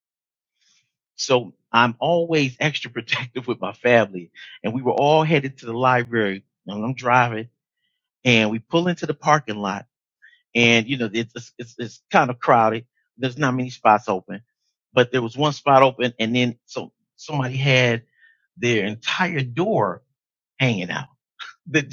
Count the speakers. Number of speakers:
1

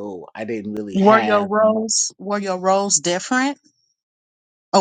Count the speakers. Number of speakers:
2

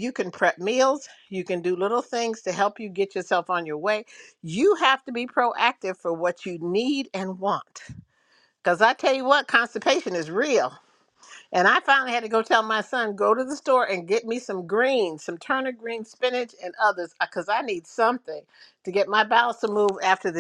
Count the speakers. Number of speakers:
1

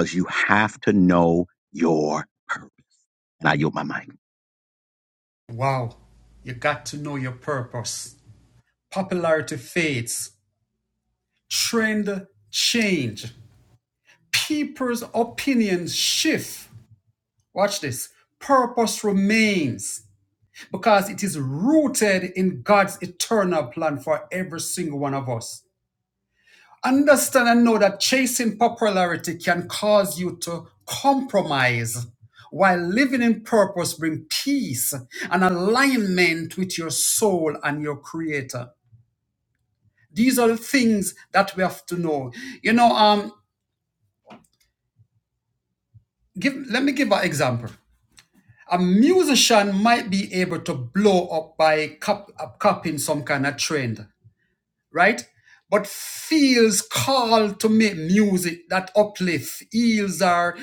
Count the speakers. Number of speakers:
2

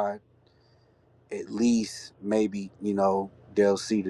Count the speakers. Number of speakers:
1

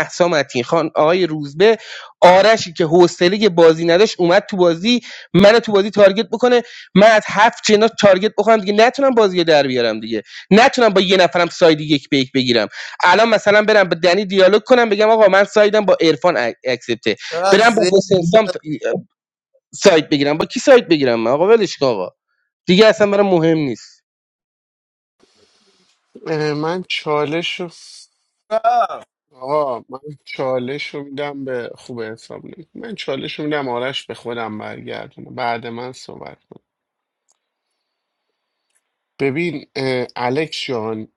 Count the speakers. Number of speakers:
3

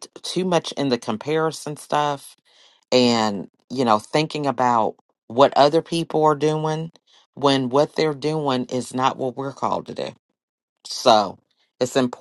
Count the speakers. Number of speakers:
1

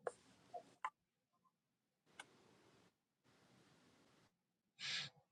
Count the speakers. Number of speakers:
0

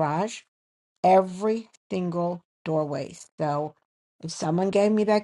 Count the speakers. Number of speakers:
1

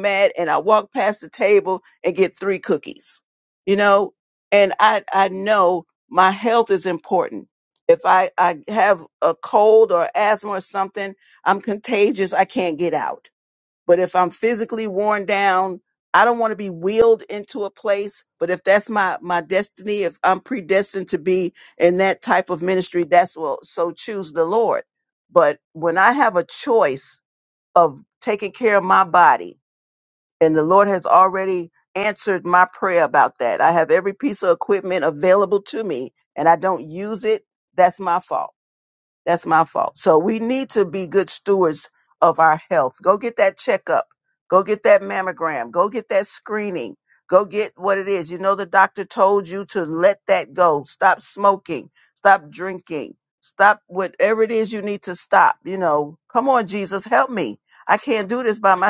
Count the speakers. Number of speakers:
1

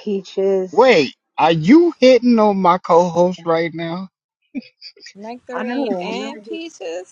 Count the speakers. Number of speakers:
3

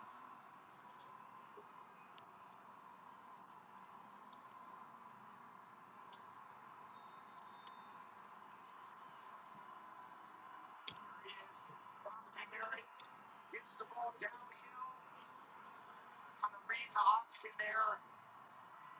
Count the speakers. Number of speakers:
0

